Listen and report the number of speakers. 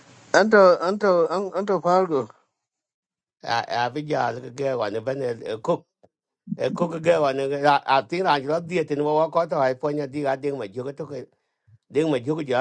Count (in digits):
2